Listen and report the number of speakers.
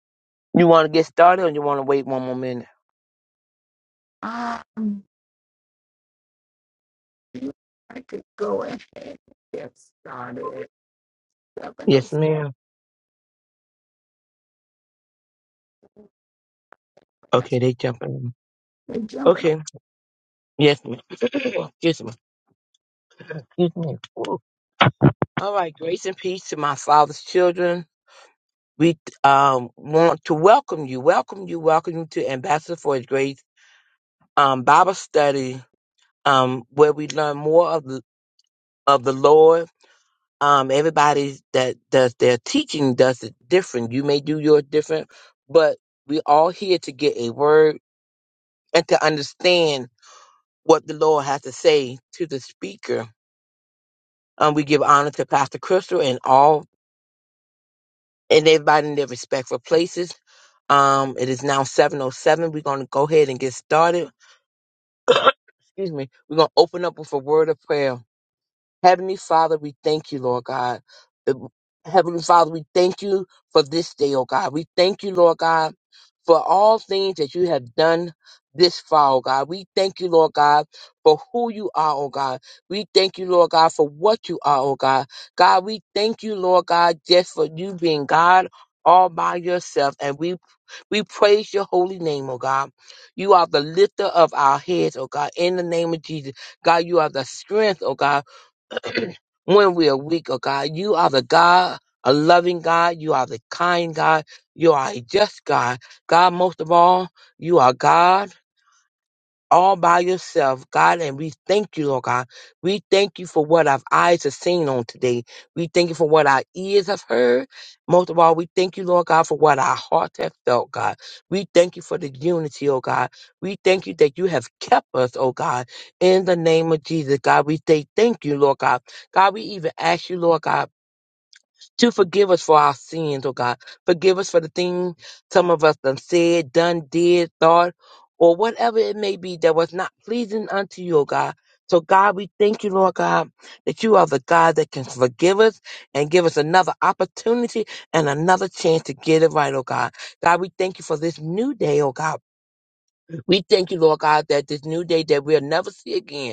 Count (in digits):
2